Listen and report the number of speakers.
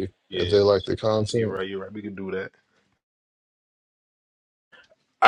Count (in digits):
2